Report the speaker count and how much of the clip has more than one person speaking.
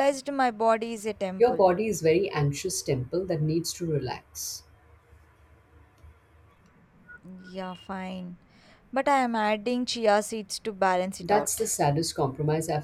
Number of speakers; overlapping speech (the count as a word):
two, about 5%